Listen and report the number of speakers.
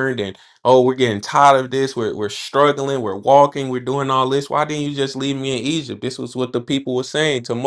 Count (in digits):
1